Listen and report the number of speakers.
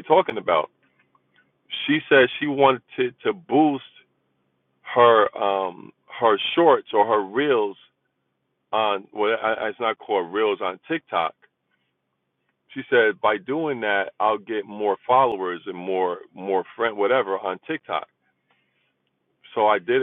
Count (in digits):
1